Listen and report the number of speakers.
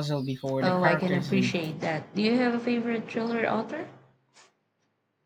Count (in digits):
2